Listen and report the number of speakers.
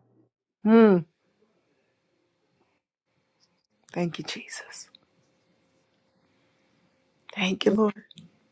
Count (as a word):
one